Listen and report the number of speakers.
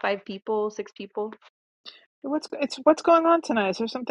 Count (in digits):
2